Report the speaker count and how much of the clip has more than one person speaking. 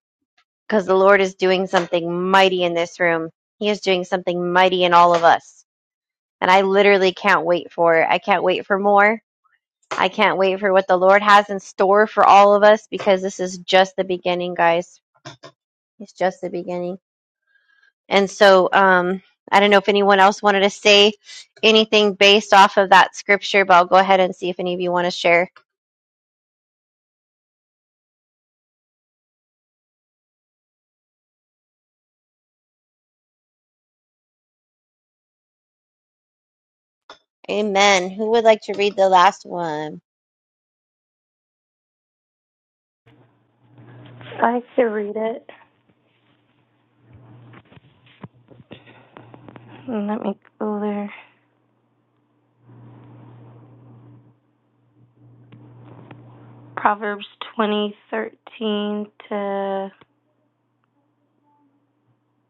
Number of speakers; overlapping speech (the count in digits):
2, no overlap